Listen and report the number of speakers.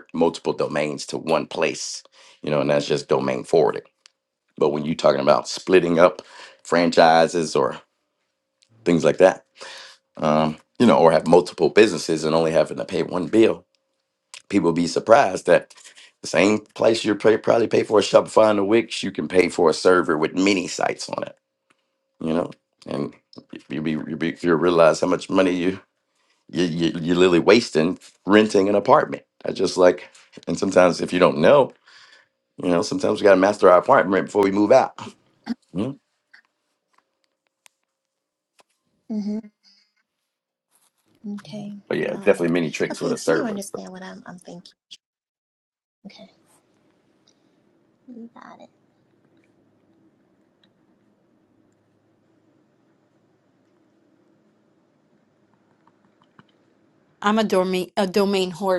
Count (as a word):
three